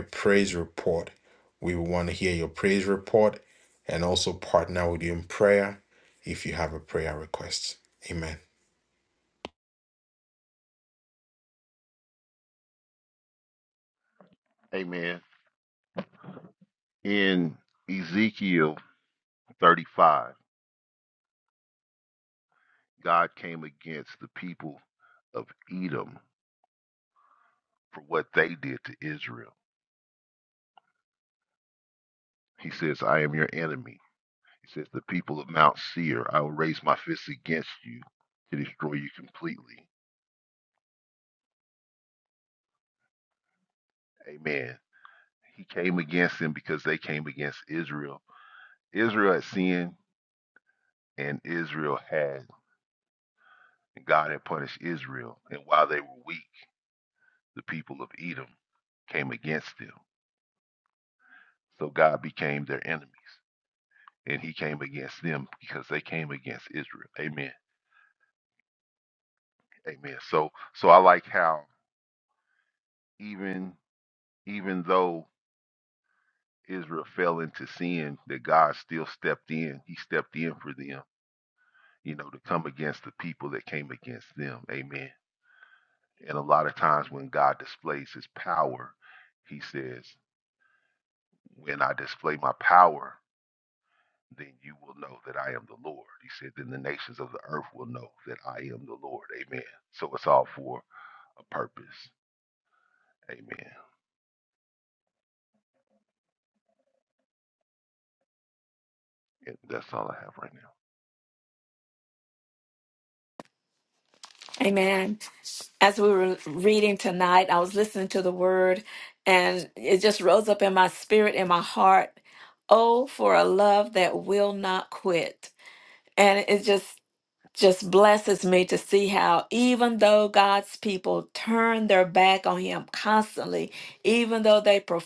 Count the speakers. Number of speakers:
3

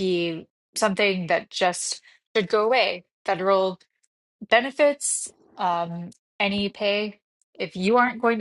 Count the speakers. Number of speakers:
1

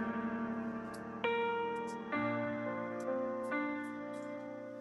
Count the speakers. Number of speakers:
0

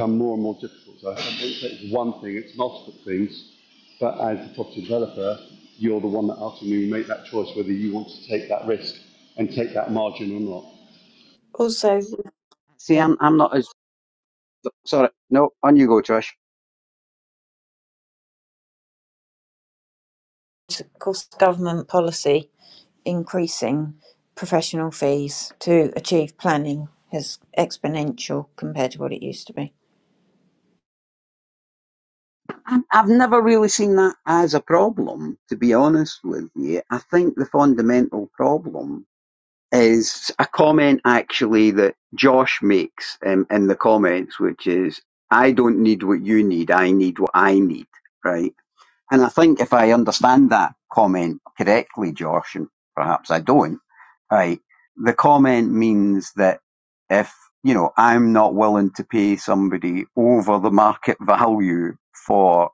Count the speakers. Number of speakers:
3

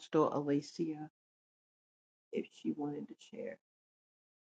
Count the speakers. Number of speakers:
1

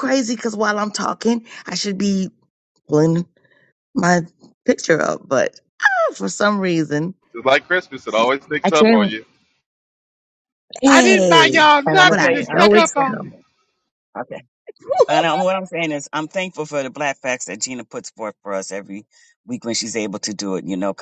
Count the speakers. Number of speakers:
3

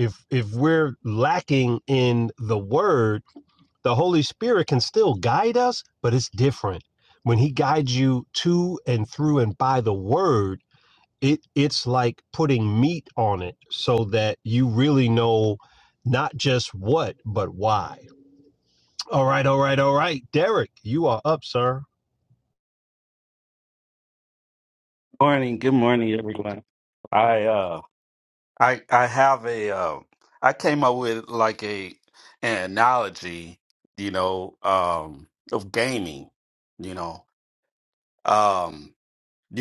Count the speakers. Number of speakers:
2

